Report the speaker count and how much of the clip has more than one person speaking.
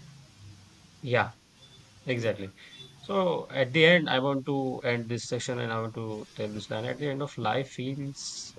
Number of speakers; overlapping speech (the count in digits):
1, no overlap